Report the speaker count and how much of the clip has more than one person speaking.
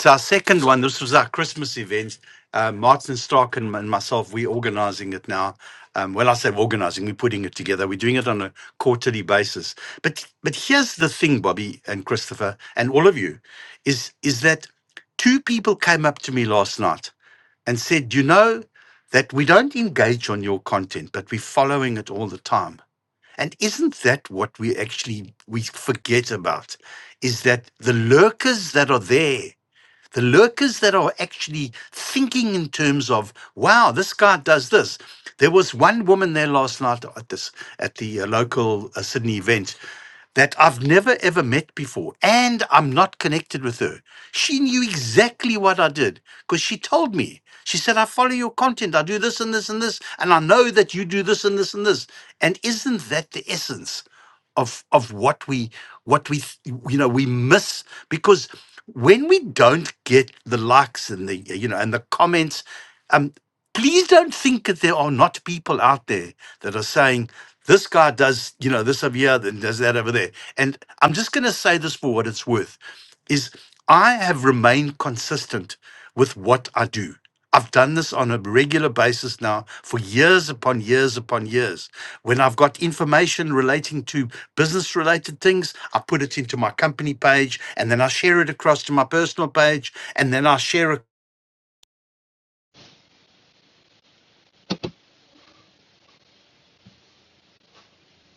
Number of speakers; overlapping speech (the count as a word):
one, no overlap